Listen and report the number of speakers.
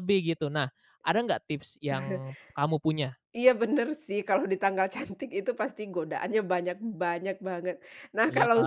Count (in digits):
2